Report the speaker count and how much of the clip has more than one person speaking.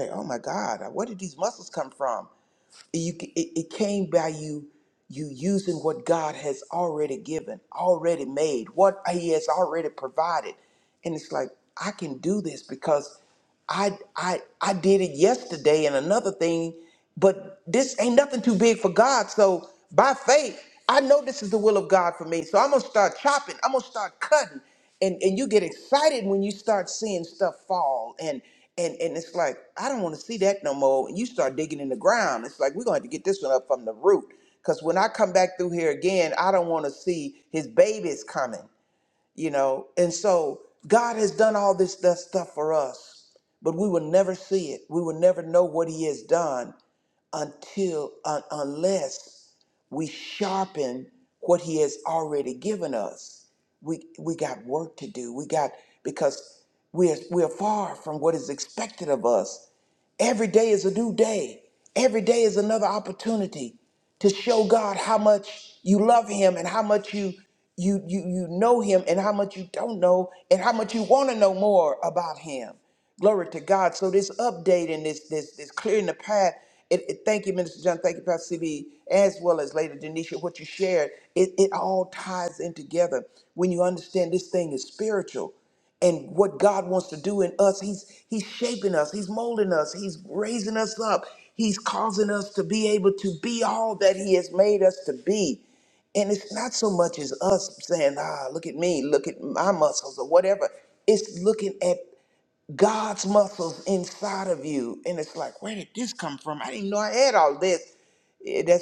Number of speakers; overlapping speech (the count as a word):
one, no overlap